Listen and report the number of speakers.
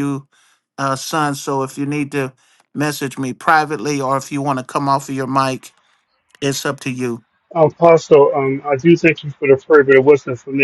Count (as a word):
two